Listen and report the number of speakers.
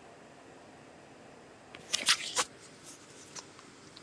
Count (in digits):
0